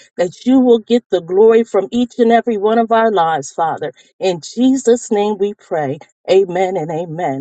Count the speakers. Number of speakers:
1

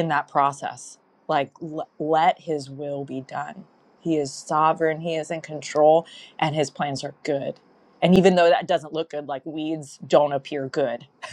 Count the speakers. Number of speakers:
1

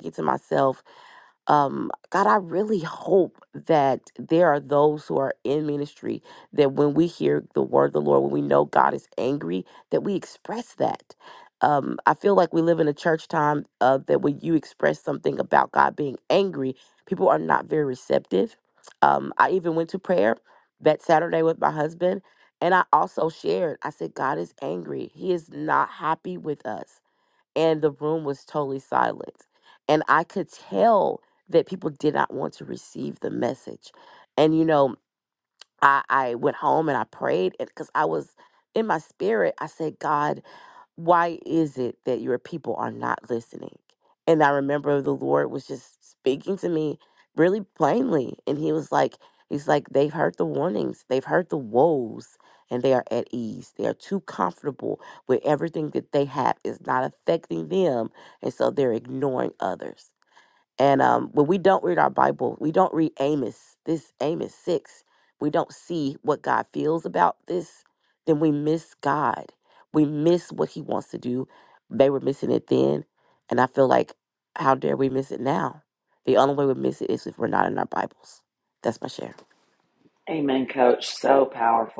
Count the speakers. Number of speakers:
2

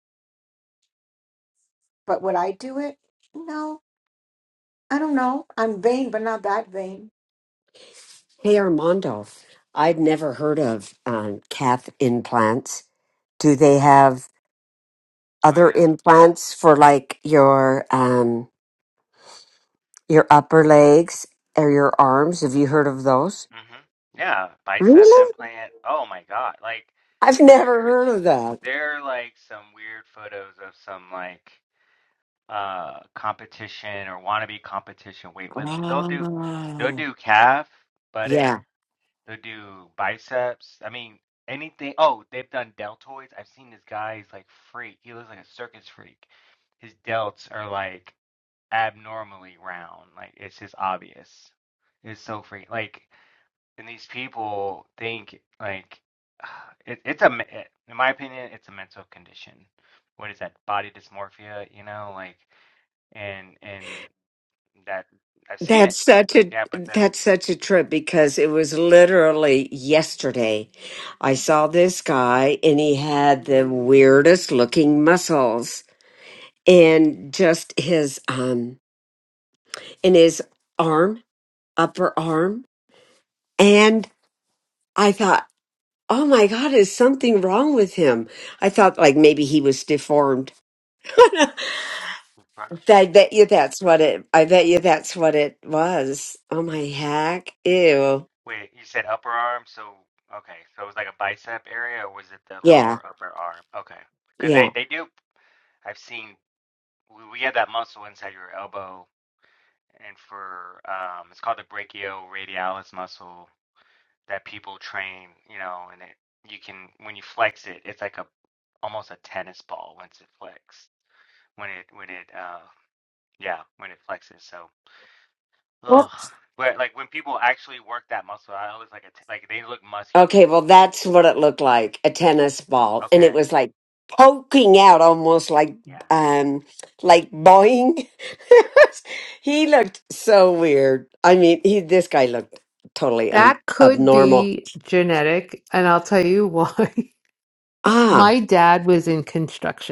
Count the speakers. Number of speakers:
4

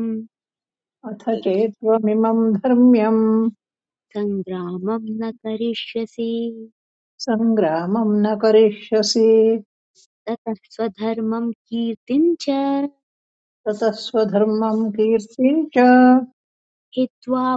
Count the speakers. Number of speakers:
2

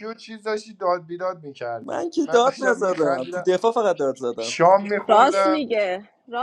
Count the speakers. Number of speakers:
3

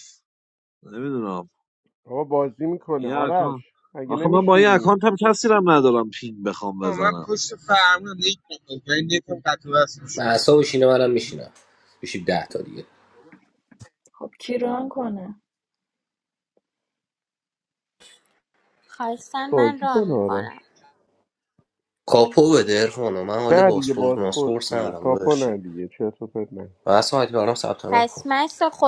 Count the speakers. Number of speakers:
6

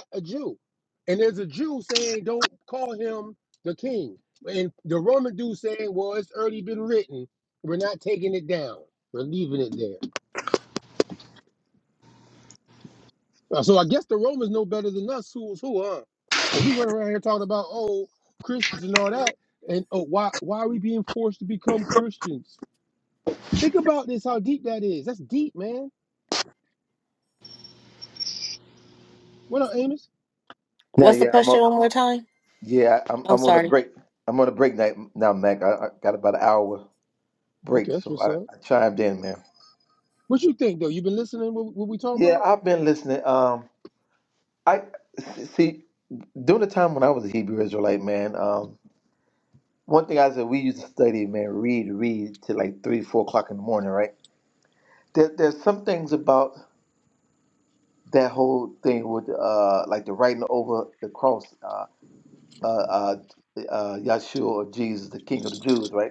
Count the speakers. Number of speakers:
3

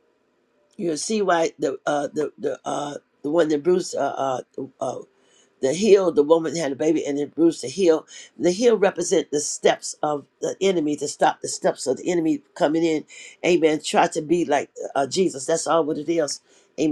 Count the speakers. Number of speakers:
1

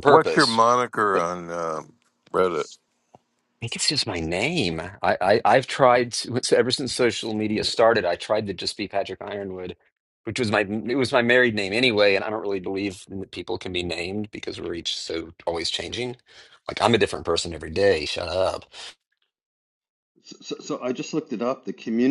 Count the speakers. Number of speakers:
3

